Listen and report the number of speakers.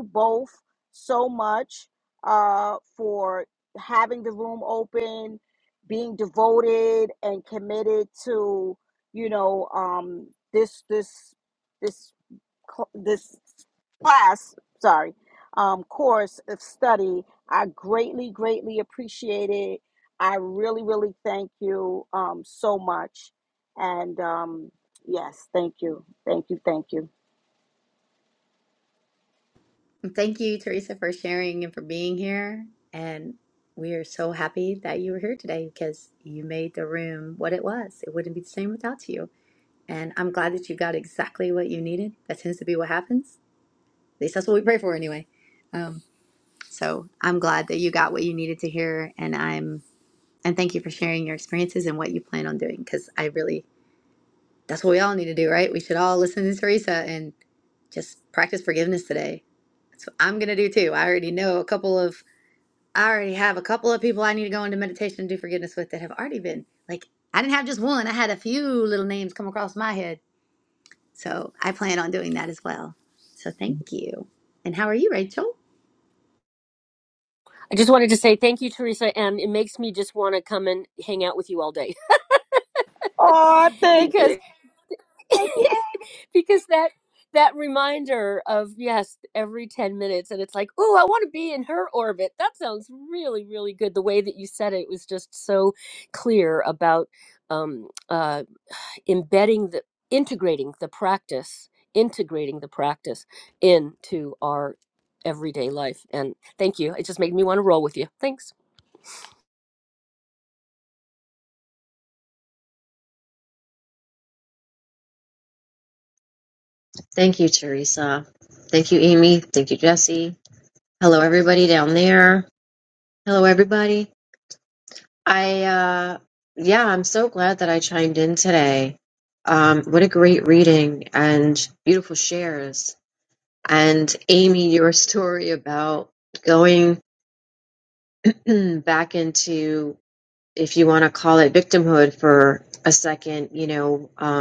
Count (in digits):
4